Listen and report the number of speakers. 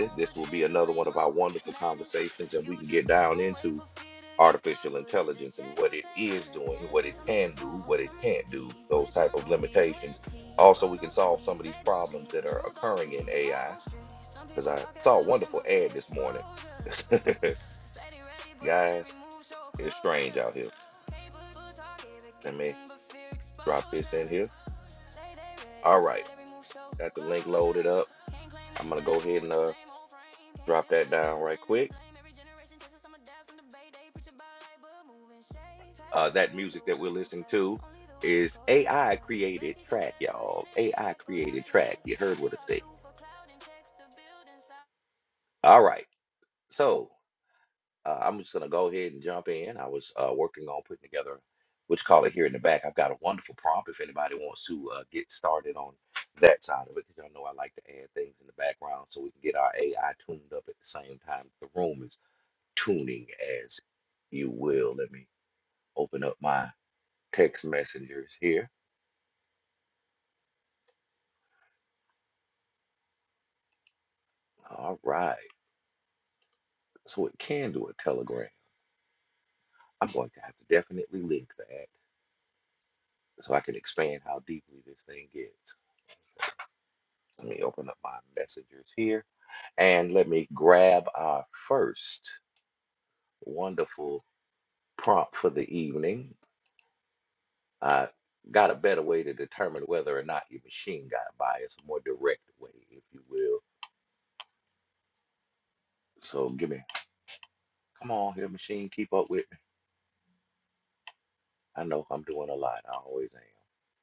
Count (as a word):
two